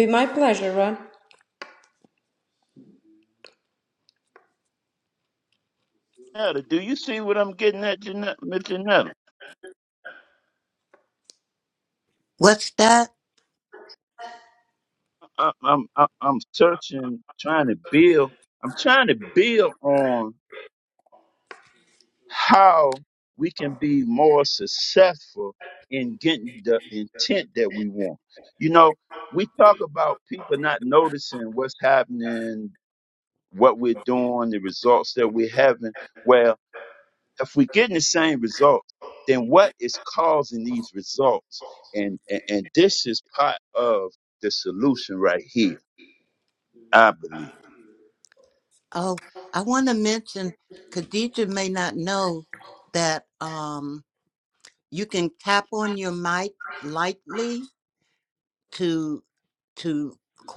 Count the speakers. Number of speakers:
three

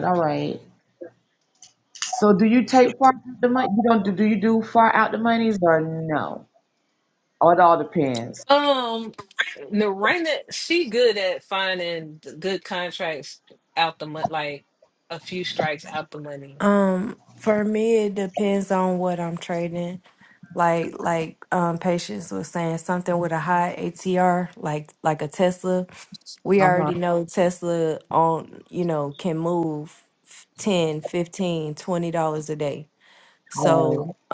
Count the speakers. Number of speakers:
three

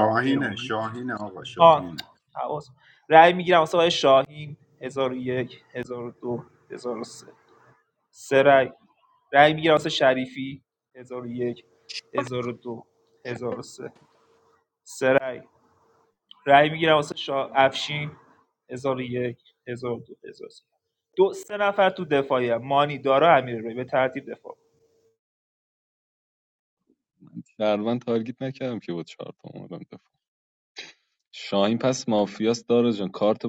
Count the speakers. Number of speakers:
three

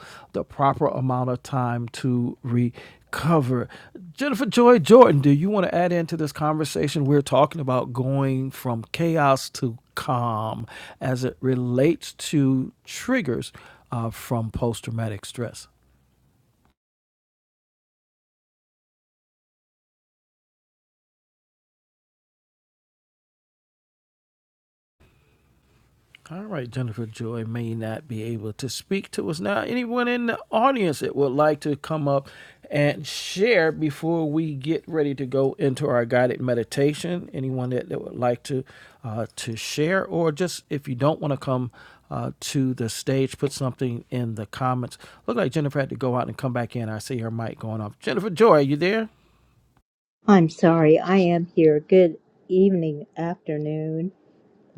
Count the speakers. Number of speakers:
two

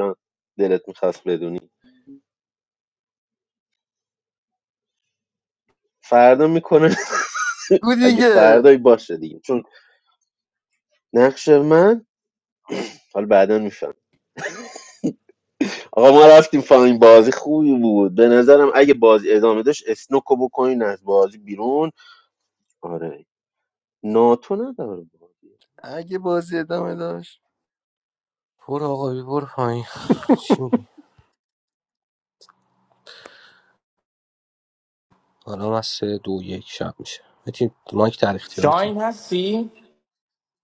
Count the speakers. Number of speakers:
four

